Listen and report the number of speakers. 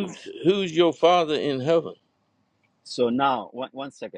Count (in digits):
2